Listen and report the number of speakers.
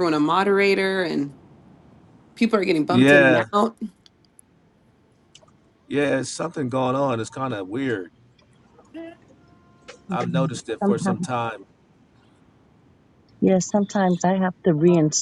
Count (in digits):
3